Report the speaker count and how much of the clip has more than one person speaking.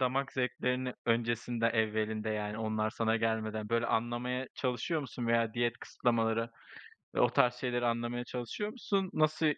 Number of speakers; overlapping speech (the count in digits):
1, no overlap